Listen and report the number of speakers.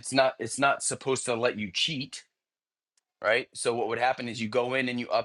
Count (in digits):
1